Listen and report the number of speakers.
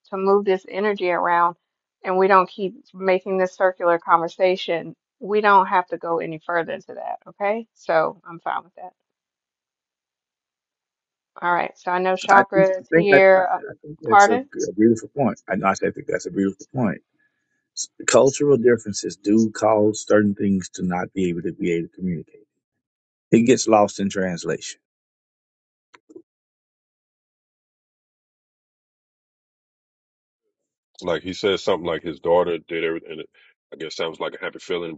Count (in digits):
3